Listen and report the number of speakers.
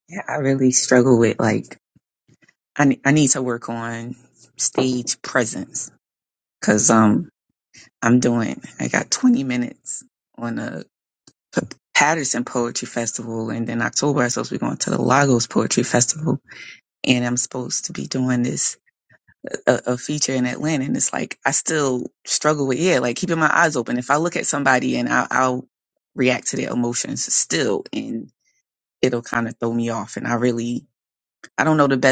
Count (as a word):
one